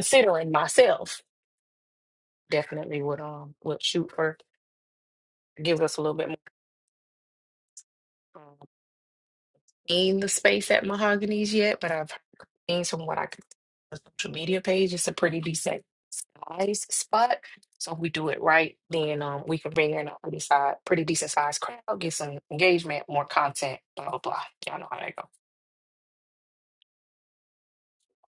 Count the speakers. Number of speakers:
1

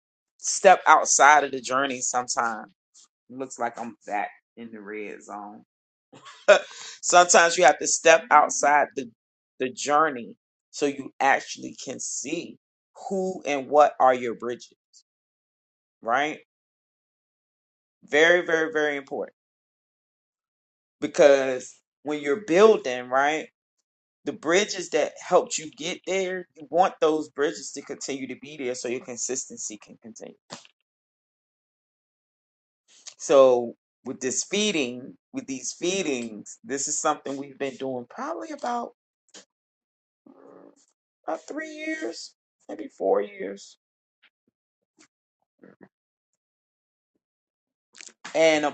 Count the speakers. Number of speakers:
1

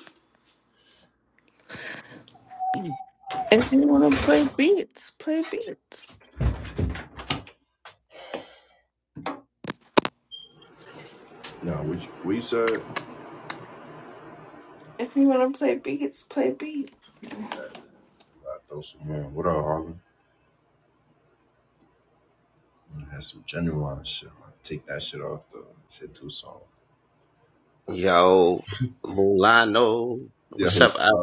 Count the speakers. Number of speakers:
3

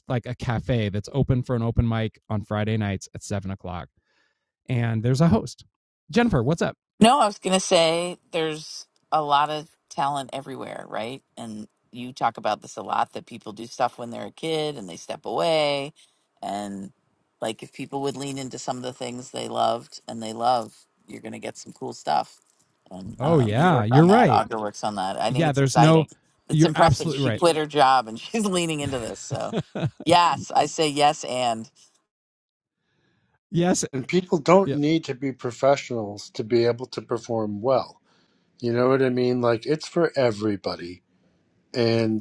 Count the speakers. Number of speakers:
3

